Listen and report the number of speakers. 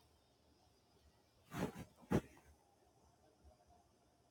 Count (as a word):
zero